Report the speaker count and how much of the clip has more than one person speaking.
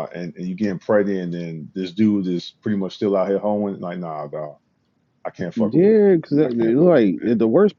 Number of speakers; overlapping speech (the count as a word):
two, about 10%